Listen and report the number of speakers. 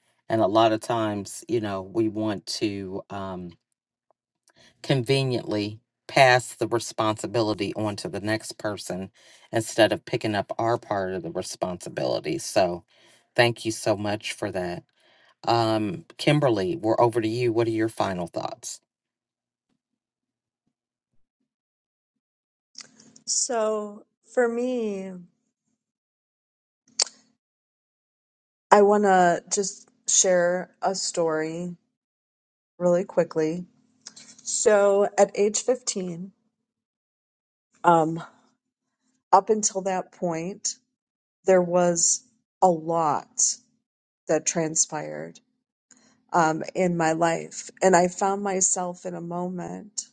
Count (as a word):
two